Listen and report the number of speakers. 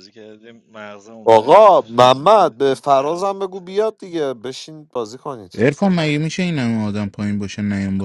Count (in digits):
3